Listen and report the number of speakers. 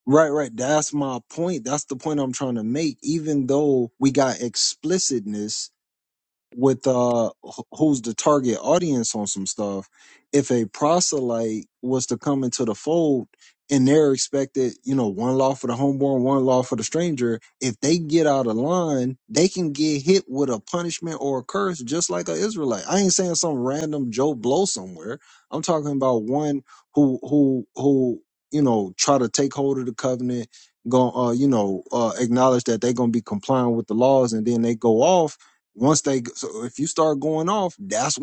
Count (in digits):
1